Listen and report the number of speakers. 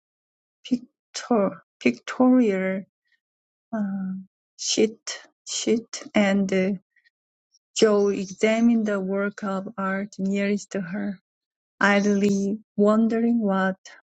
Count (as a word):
one